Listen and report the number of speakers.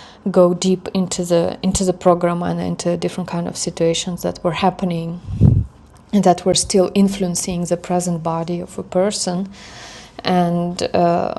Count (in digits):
1